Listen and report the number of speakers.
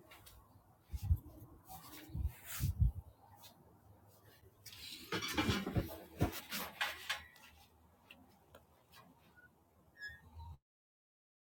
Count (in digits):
0